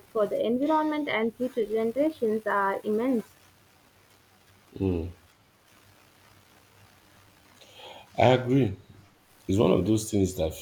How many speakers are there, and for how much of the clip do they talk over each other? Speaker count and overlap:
2, no overlap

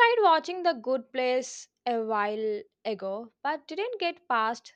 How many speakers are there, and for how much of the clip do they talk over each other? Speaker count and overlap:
1, no overlap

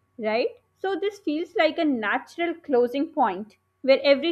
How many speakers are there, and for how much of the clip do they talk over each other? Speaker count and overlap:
1, no overlap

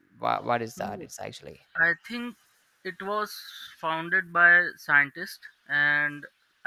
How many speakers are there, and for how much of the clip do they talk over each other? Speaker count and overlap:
2, about 4%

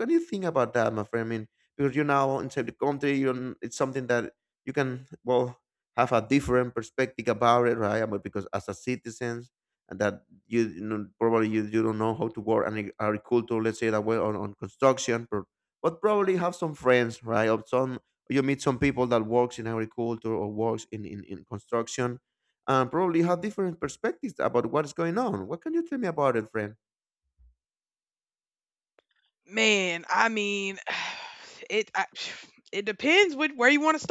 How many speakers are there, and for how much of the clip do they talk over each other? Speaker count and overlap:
2, no overlap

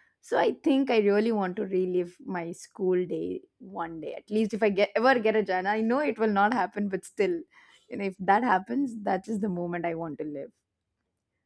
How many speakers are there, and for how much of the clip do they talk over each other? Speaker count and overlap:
1, no overlap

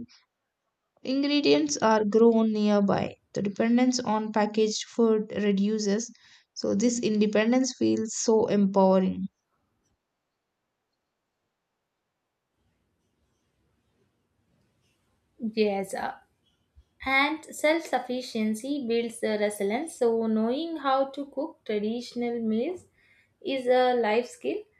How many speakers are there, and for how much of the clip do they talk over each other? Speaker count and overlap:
2, no overlap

